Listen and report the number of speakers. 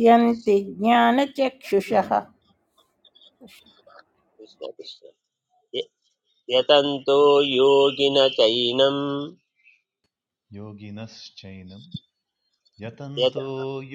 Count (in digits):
3